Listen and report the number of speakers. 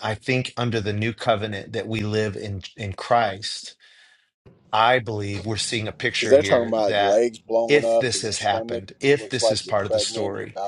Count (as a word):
two